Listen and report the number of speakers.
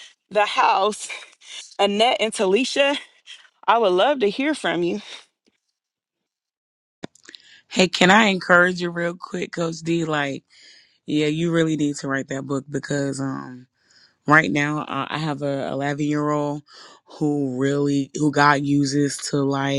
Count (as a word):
two